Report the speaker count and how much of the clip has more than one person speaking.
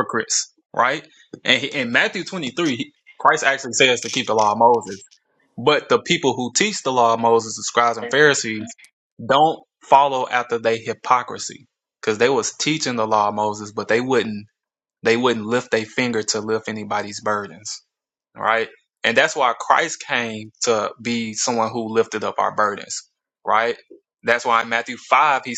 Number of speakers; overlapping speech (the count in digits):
1, no overlap